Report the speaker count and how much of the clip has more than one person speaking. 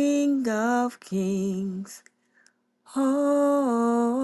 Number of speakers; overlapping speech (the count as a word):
one, no overlap